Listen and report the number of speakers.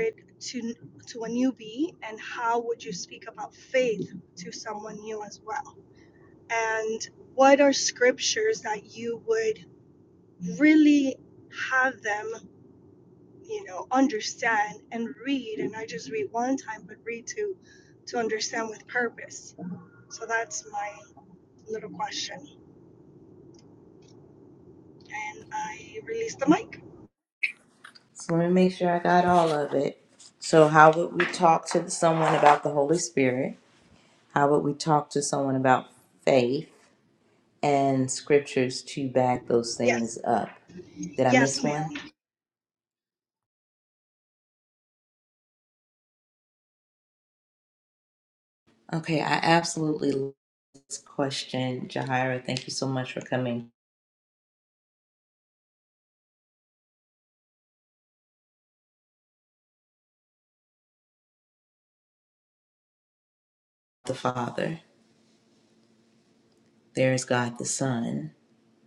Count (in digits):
2